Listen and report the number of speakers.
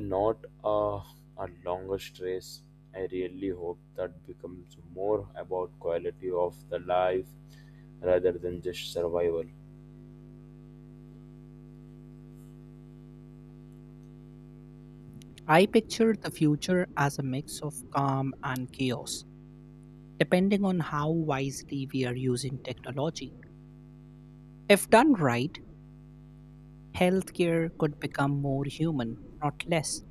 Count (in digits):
2